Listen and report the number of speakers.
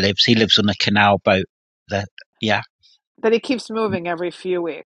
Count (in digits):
2